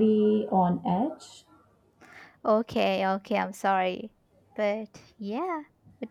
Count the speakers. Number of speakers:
2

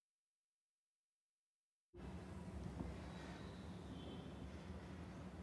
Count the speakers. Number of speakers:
0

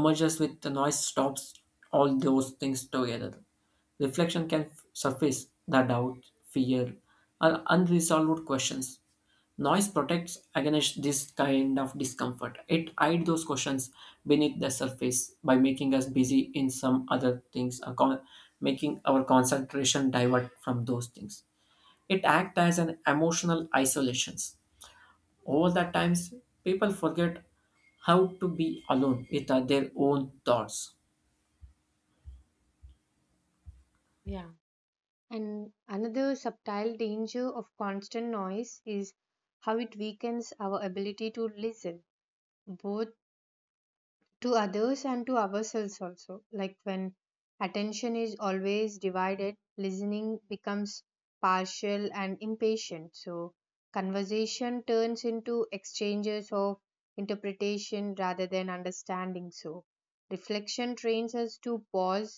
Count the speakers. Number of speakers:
2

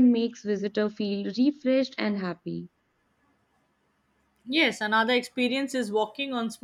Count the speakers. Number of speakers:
2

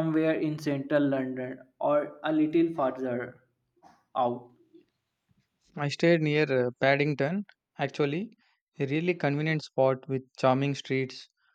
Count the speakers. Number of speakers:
2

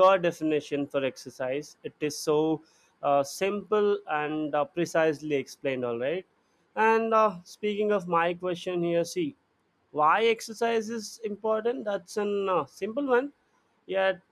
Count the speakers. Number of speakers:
1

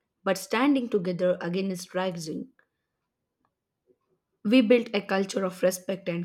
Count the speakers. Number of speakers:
1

